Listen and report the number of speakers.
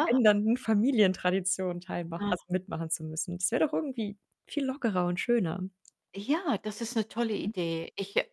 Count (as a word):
two